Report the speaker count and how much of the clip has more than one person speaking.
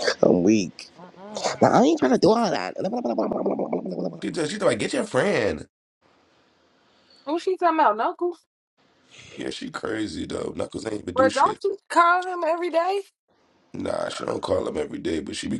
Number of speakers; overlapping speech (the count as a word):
three, about 3%